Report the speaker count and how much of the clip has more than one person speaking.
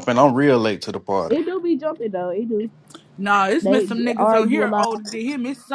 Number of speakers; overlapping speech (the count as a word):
three, about 24%